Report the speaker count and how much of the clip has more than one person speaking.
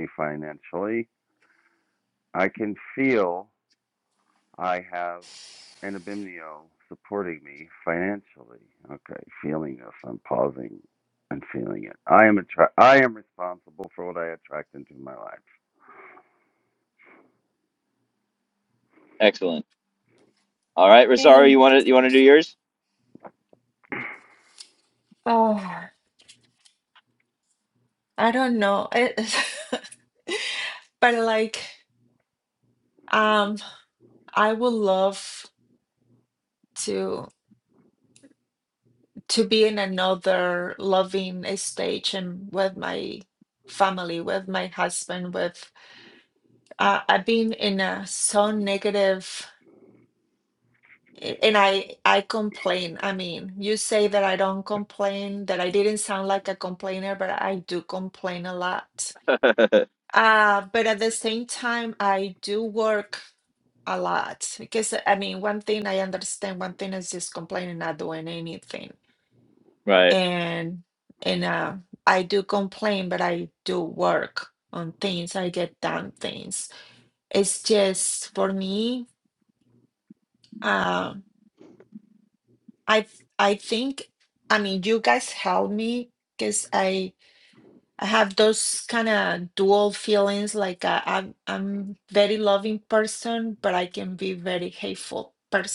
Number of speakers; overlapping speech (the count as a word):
three, under 1%